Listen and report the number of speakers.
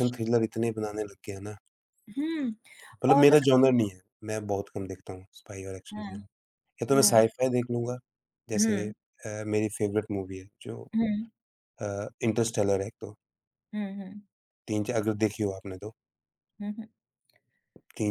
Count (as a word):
two